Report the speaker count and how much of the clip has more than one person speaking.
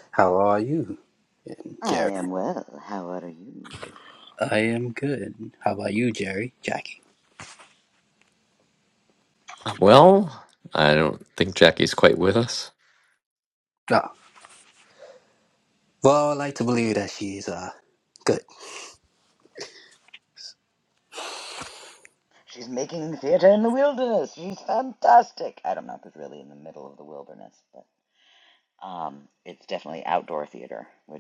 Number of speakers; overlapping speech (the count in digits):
3, about 1%